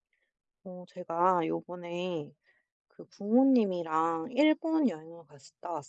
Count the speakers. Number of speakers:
1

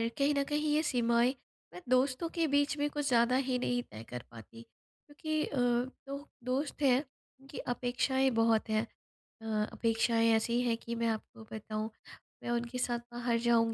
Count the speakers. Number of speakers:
1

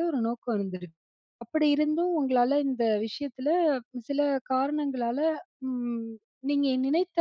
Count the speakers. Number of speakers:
1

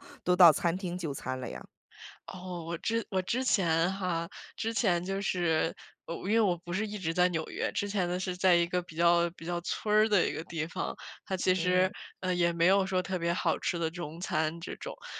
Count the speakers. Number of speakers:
2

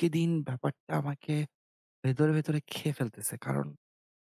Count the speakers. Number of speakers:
1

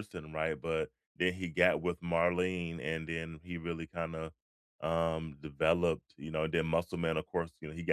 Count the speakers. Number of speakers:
1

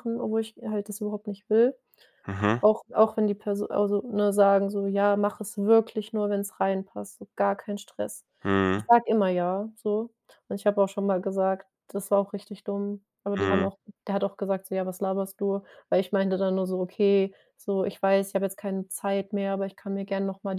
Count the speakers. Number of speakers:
2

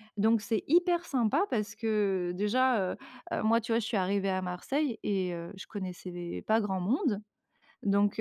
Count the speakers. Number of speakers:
1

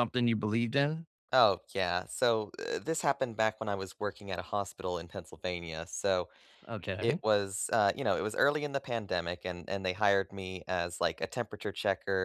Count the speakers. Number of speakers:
2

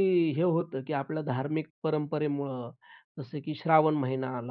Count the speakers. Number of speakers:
1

